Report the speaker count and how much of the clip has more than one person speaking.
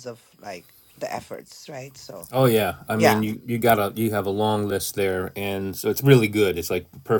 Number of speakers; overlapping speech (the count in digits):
2, about 4%